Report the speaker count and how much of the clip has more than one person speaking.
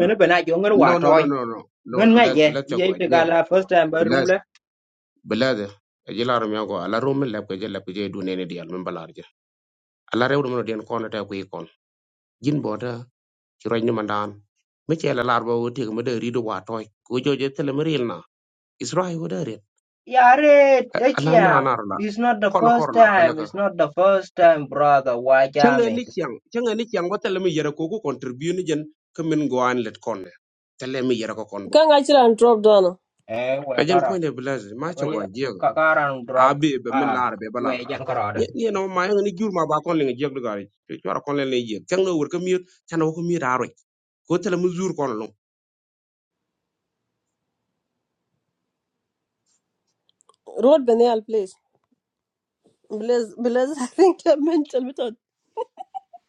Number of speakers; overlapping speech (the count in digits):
3, about 10%